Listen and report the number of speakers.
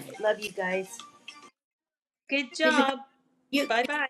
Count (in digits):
2